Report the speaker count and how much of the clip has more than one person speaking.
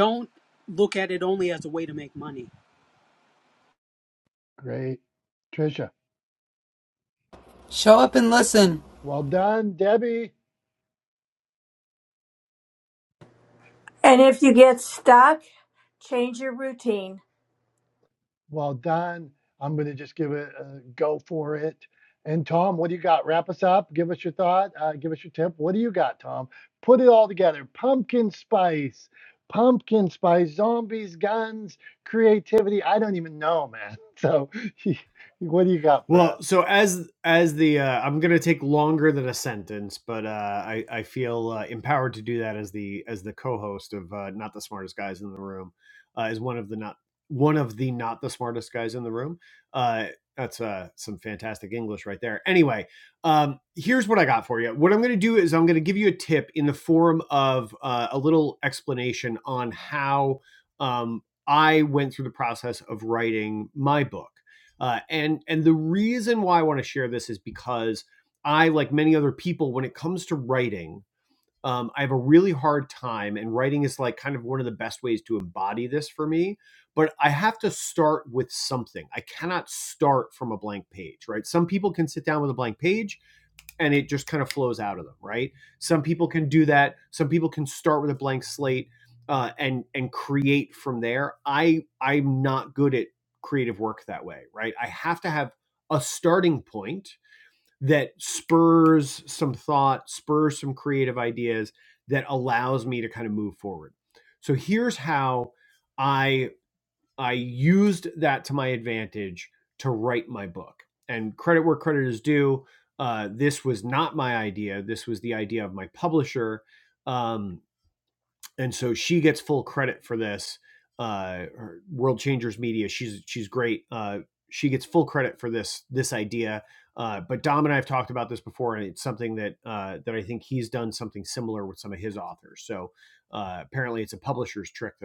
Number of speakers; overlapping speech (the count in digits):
5, under 1%